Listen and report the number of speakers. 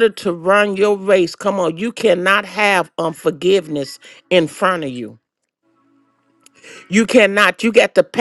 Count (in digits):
1